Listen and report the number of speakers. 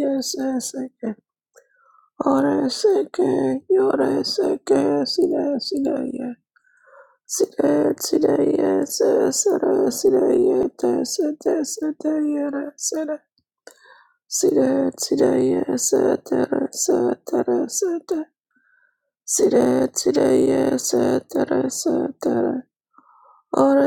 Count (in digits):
1